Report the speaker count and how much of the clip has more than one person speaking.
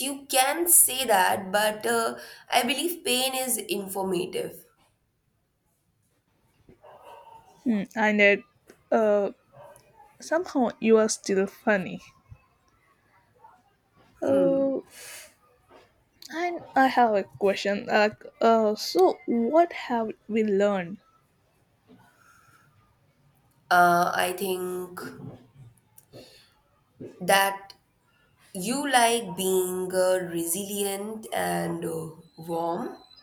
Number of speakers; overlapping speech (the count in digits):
2, about 1%